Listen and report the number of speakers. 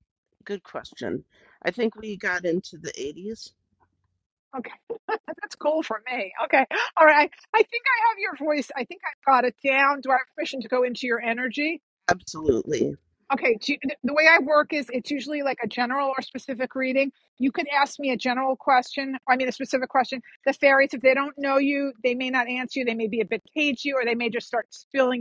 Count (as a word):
two